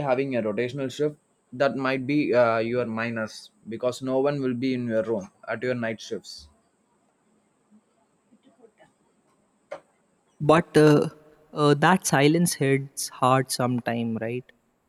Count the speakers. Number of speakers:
two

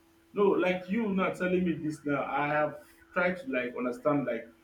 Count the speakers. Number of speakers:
one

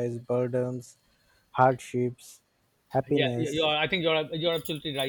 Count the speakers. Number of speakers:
two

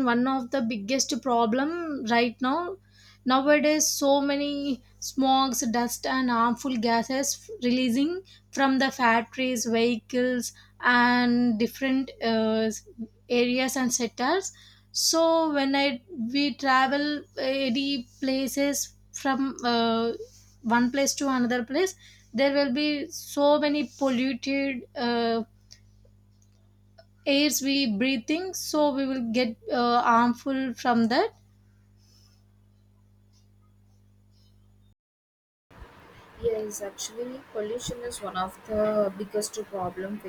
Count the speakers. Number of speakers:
two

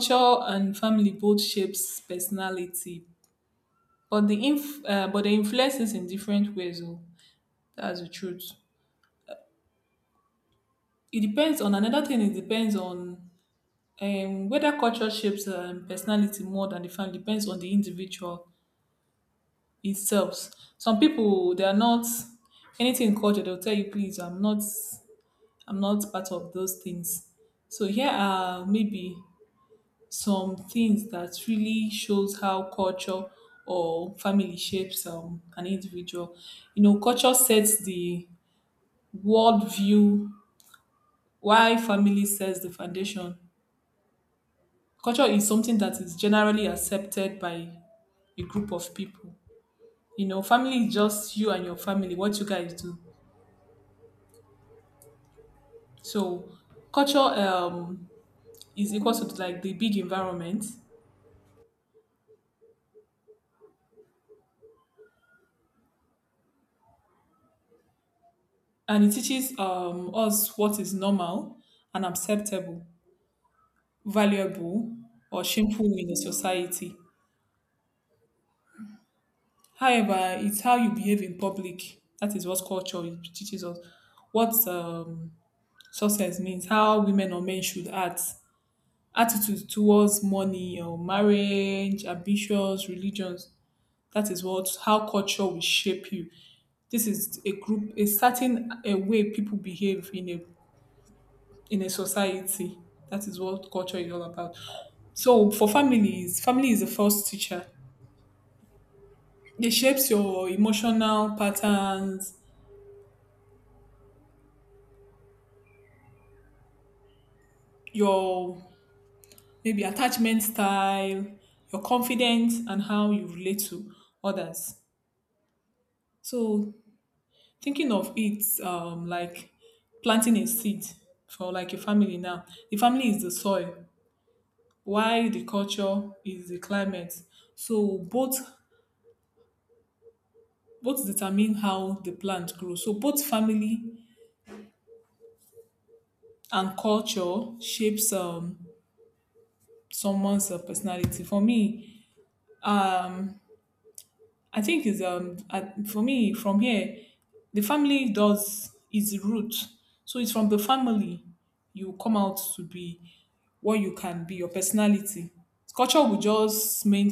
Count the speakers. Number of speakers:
one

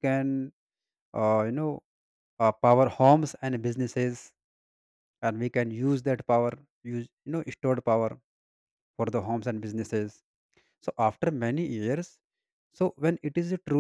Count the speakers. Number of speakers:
one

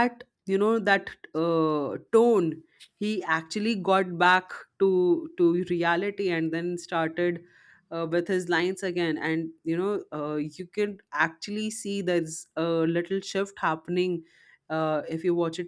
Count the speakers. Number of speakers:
one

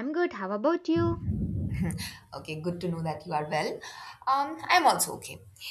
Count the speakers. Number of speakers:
two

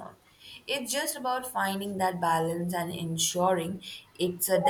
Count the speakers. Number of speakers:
one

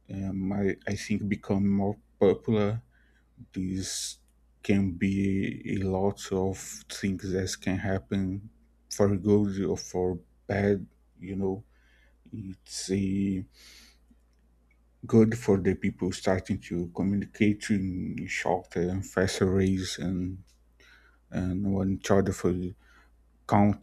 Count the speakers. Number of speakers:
one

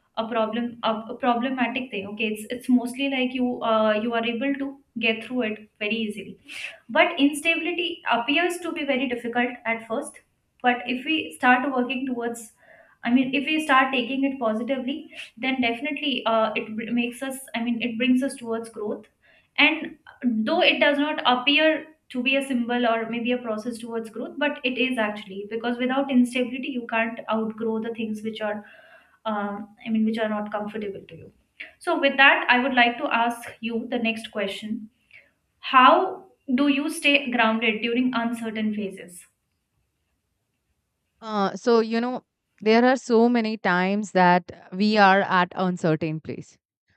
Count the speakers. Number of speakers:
two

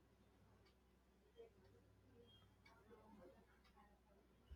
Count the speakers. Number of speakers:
zero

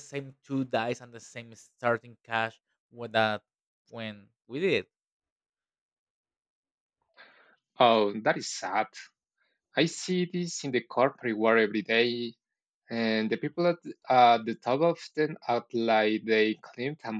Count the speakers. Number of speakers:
two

